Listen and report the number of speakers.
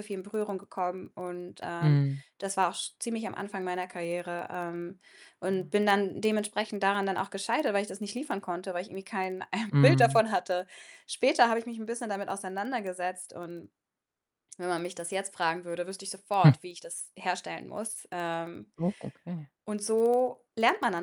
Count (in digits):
2